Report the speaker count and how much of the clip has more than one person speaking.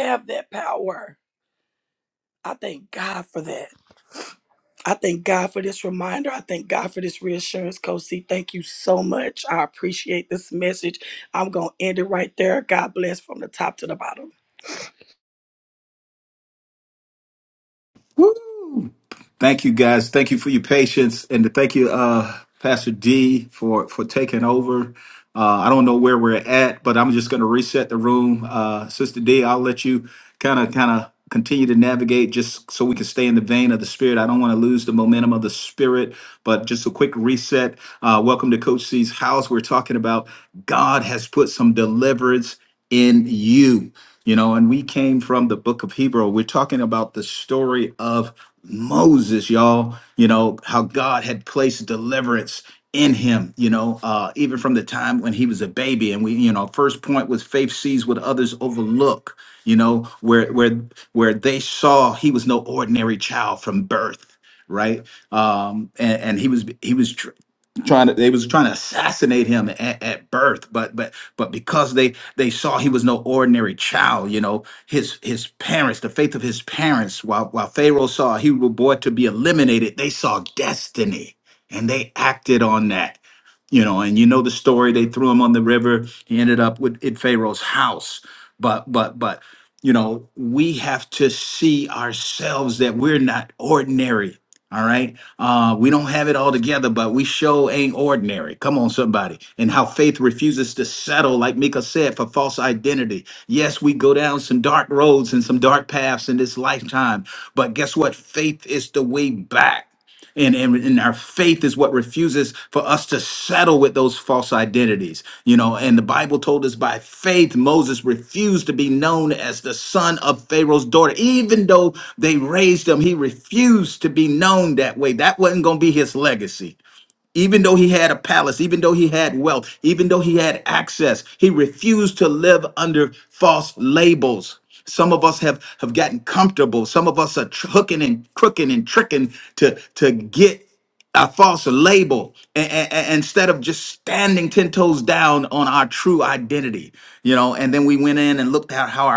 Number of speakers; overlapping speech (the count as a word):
two, no overlap